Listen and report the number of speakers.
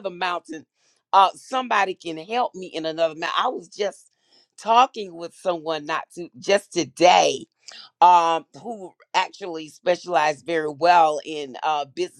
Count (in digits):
1